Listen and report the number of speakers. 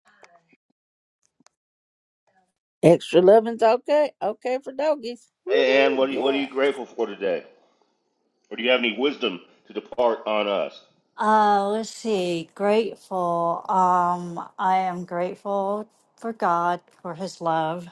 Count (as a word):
three